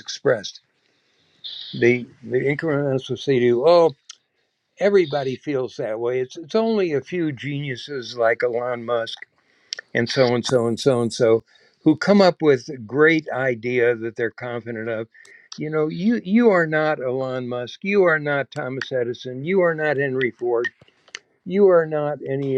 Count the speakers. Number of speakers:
1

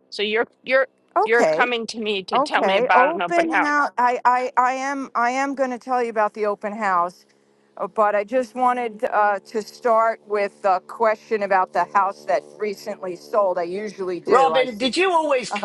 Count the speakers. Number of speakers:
3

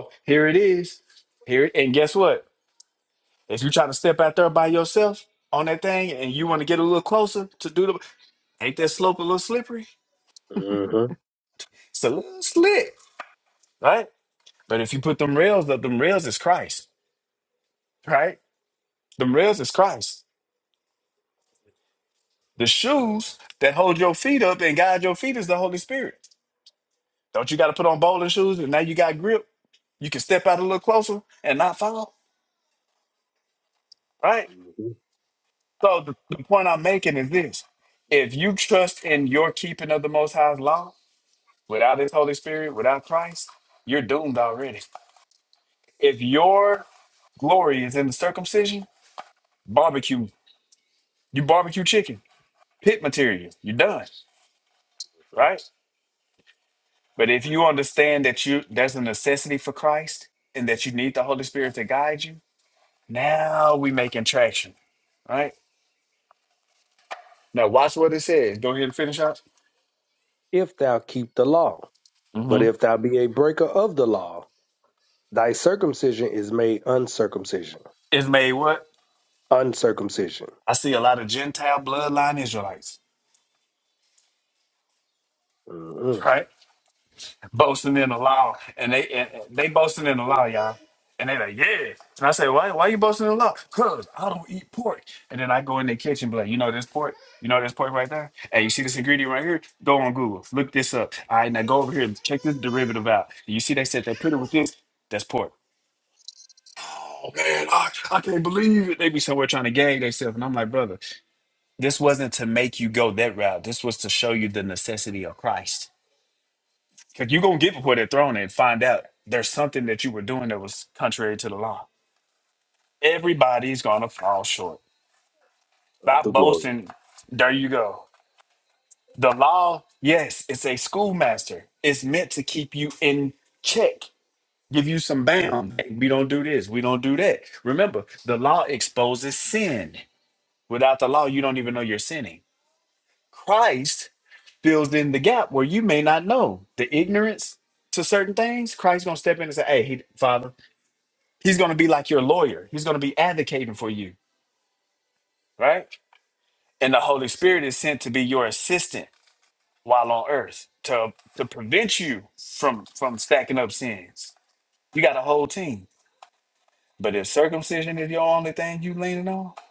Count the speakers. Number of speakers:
2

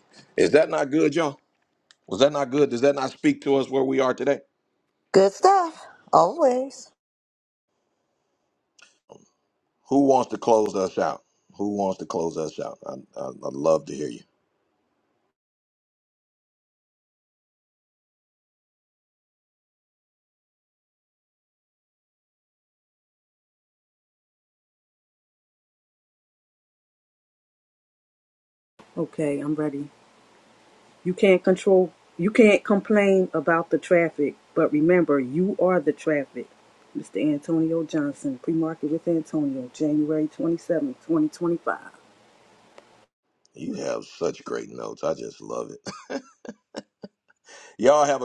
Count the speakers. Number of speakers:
3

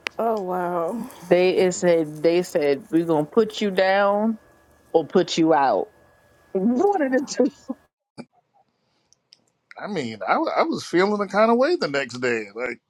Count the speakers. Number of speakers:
3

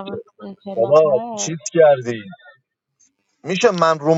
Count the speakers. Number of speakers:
2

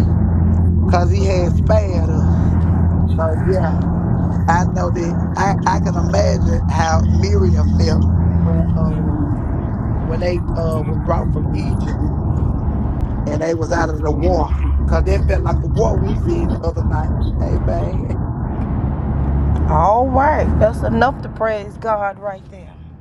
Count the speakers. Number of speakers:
2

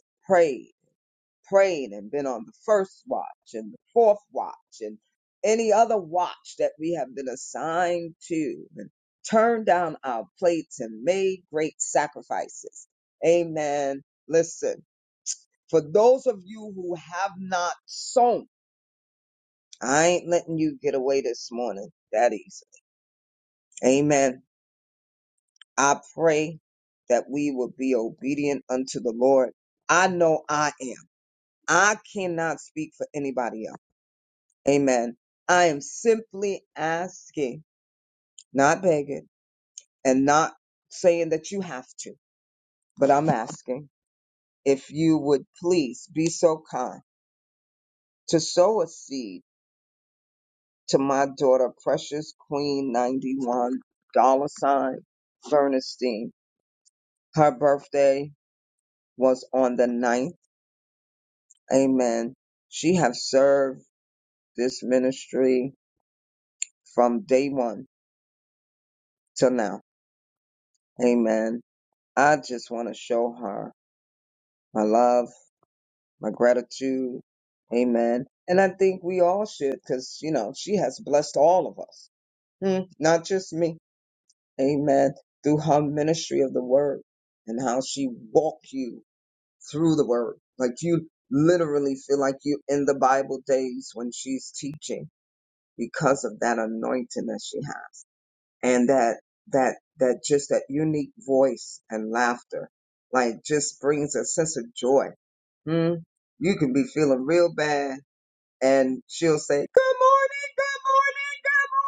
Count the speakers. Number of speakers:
1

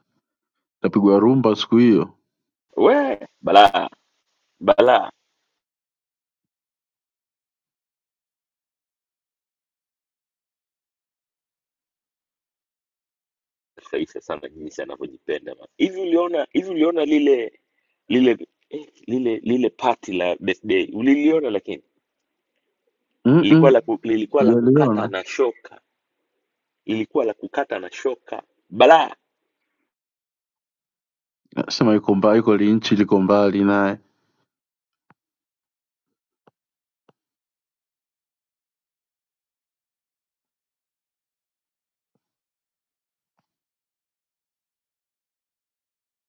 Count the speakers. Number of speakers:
2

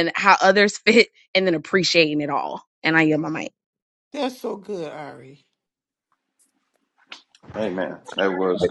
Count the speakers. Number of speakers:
3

